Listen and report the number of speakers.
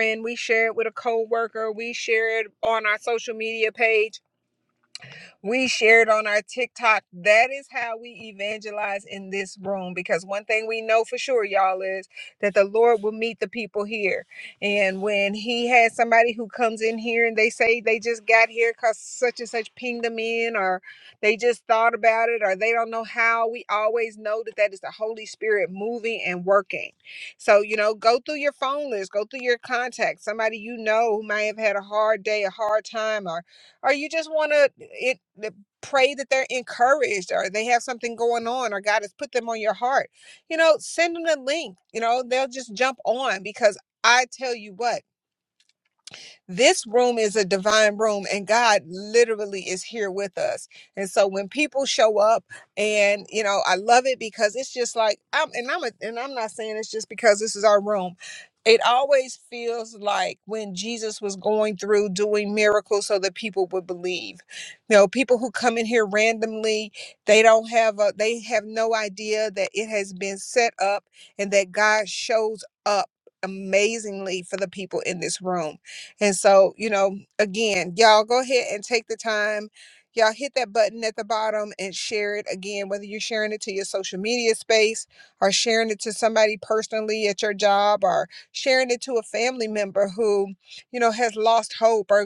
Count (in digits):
1